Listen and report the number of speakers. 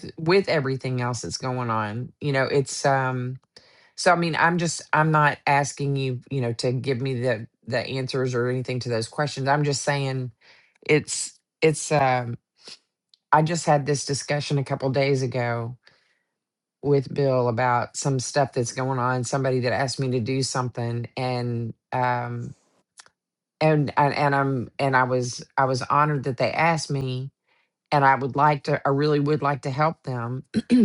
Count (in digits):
1